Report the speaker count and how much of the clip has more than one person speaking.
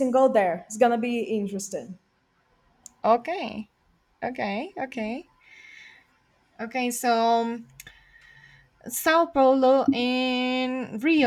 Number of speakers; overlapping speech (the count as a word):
two, no overlap